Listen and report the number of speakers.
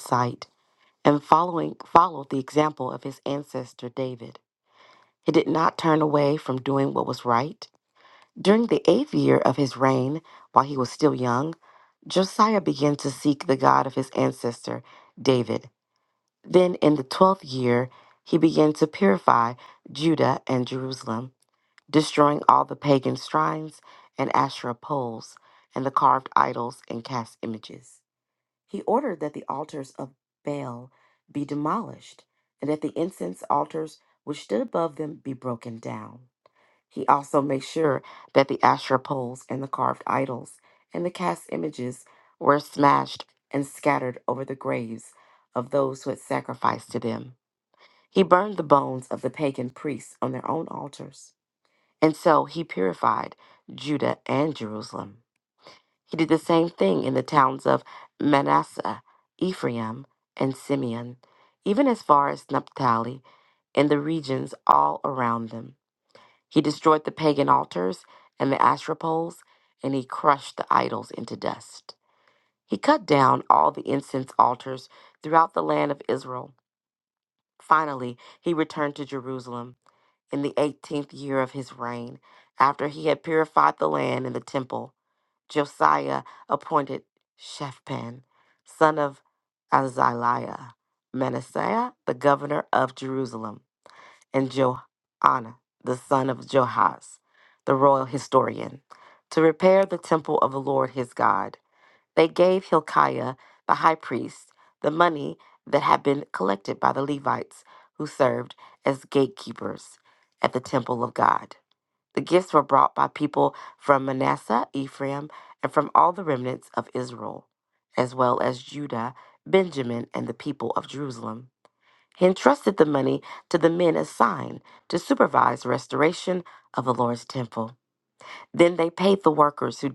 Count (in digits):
1